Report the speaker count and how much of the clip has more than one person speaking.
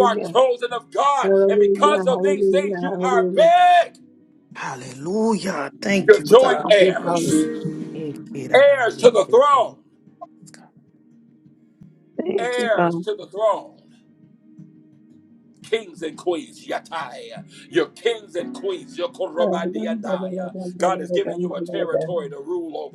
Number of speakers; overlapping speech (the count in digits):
3, about 31%